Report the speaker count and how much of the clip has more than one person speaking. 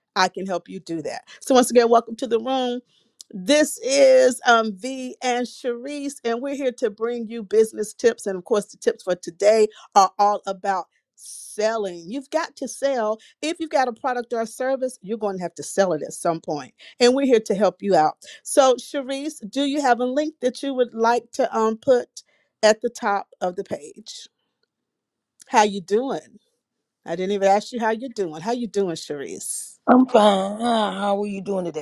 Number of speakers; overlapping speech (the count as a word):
two, no overlap